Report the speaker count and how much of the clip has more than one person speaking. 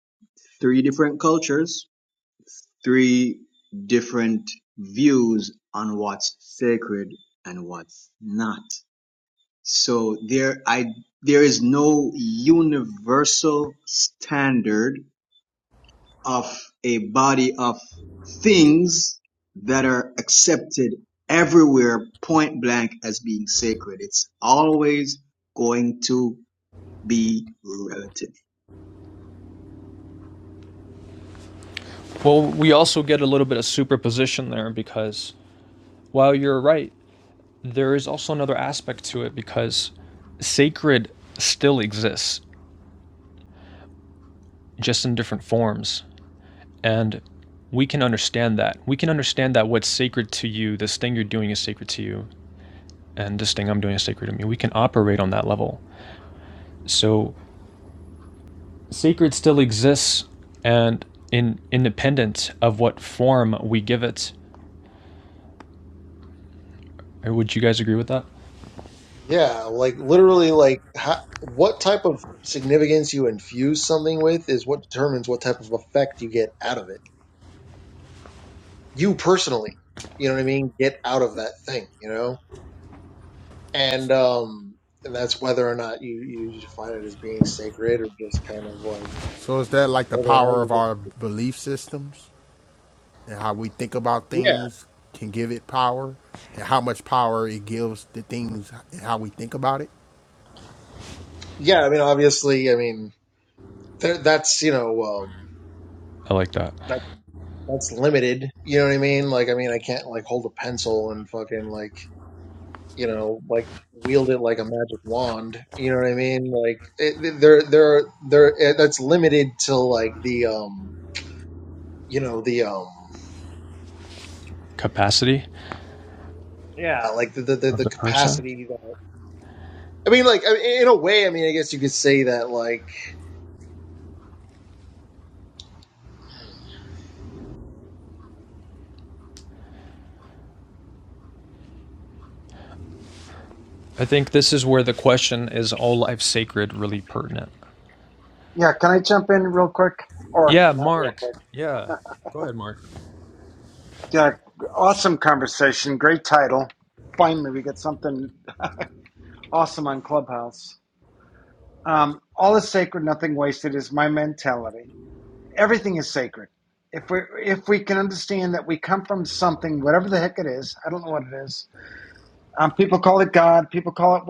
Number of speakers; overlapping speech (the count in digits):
5, about 1%